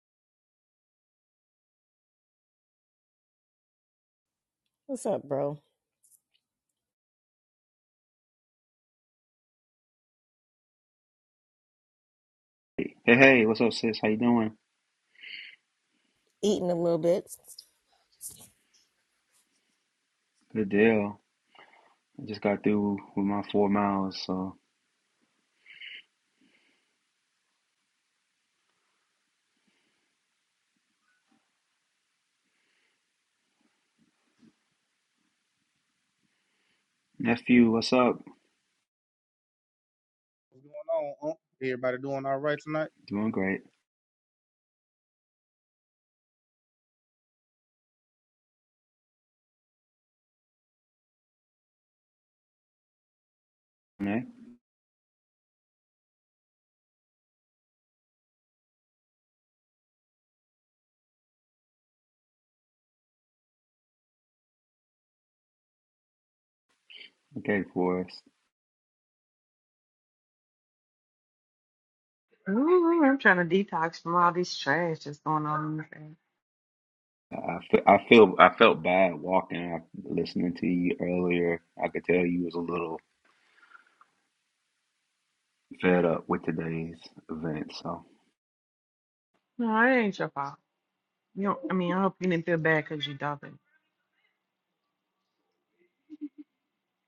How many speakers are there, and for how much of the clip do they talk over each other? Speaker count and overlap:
4, no overlap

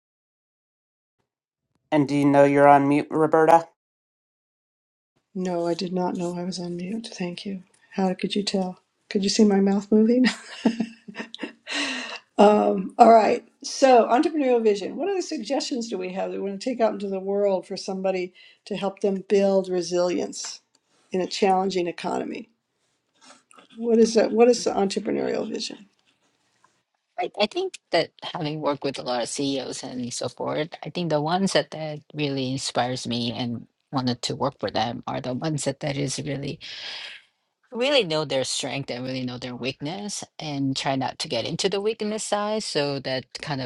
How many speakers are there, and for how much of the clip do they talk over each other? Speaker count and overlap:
3, no overlap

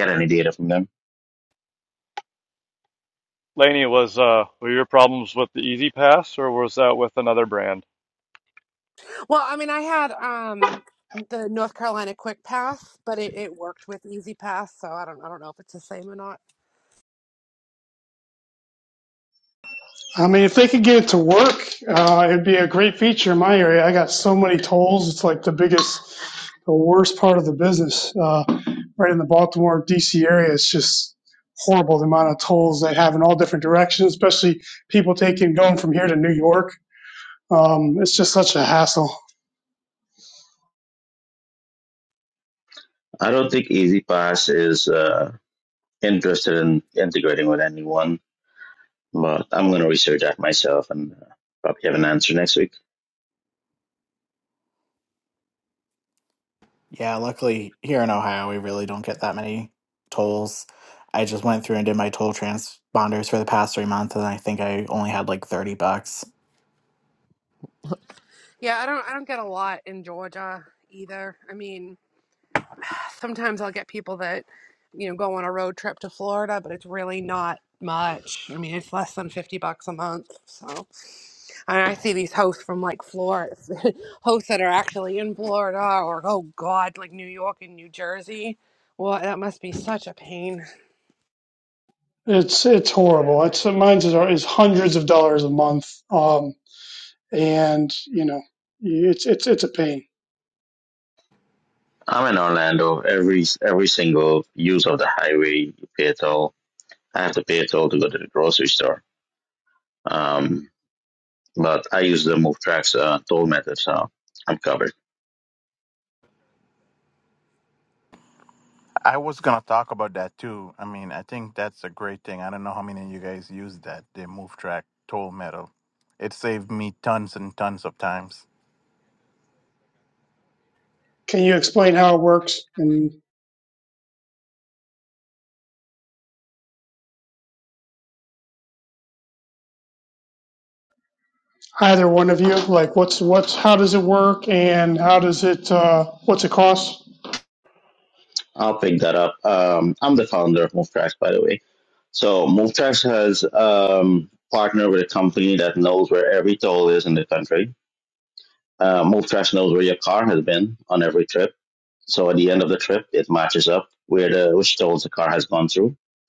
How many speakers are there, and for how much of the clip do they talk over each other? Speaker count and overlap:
6, no overlap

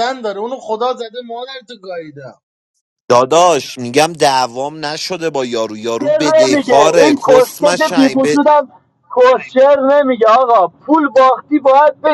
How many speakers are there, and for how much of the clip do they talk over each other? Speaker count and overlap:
3, about 20%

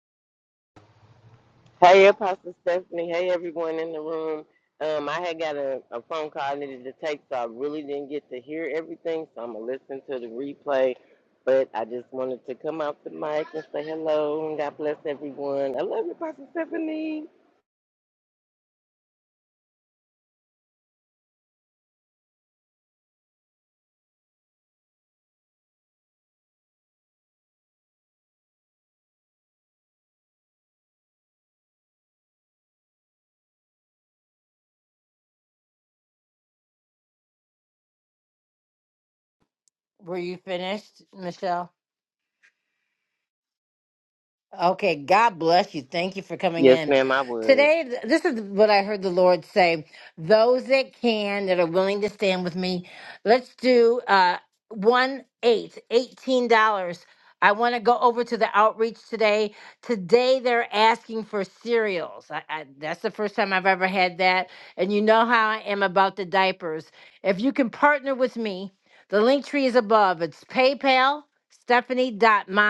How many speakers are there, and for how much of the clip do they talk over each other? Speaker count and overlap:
2, about 1%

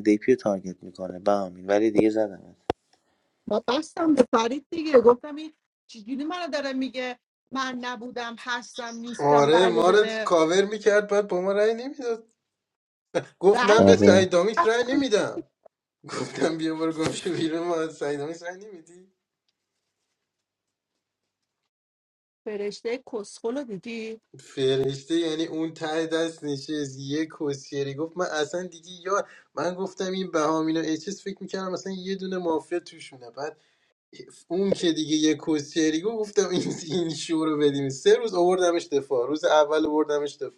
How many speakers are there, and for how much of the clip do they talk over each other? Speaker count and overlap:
3, about 6%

